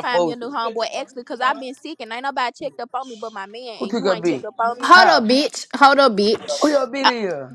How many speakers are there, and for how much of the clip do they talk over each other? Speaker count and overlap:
3, about 24%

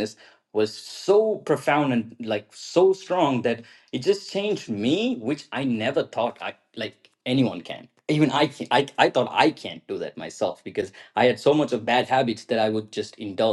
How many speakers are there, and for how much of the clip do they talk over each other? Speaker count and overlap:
1, no overlap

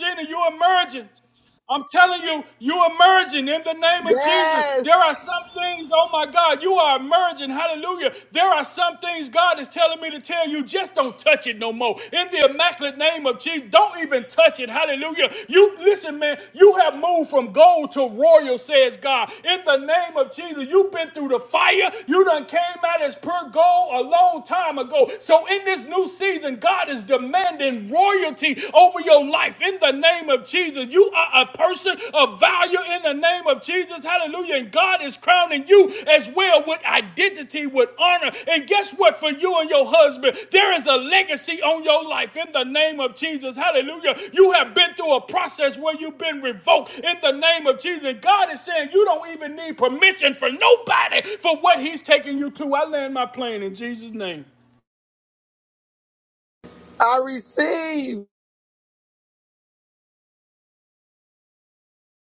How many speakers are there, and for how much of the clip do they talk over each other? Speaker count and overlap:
2, about 1%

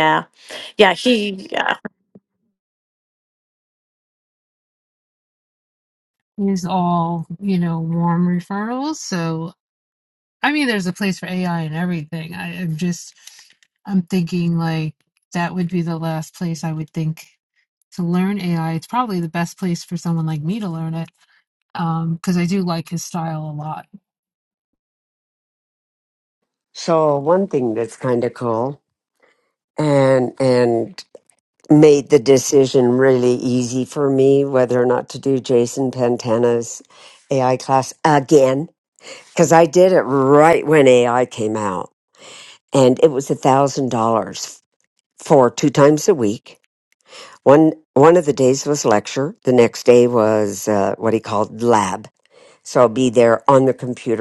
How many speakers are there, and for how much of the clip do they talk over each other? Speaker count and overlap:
3, no overlap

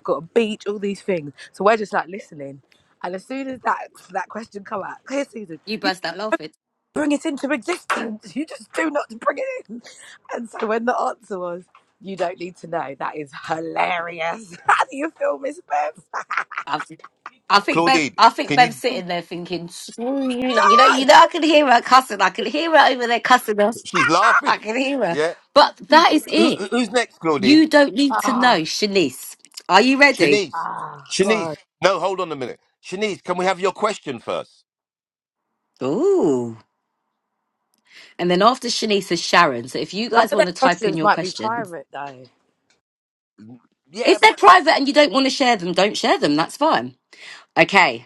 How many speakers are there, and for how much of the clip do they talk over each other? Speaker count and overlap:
3, about 9%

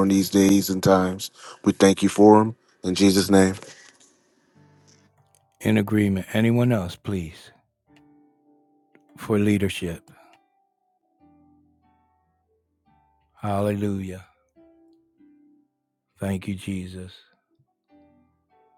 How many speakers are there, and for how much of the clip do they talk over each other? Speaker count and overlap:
2, no overlap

